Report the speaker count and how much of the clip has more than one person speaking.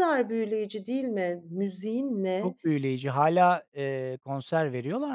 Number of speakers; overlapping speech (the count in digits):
2, about 2%